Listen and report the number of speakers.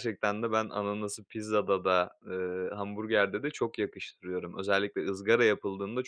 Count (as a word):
one